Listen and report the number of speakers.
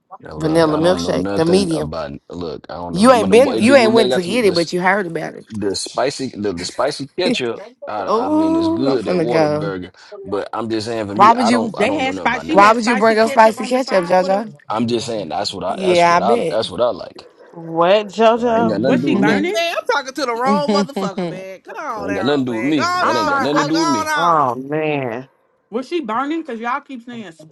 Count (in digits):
5